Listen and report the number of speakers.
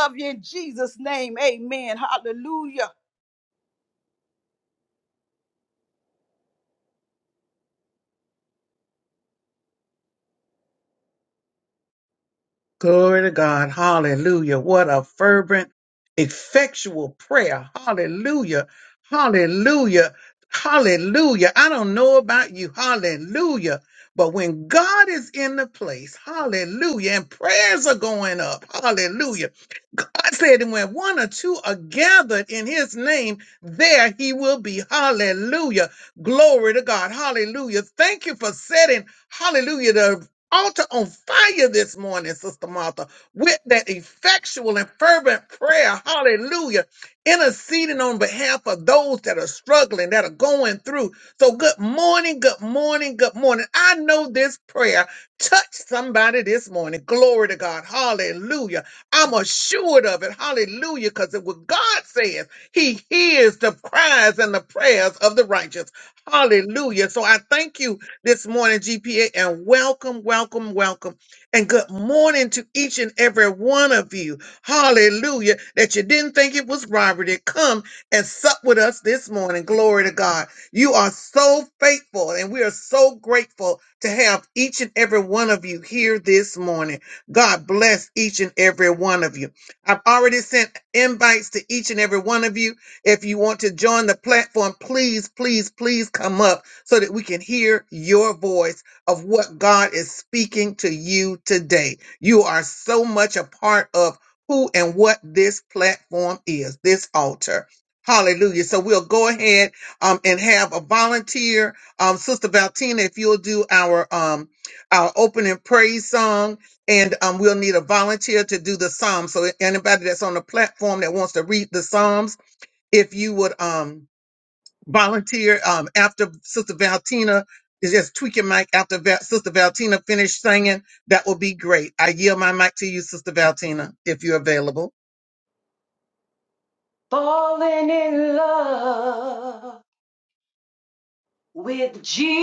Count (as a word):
three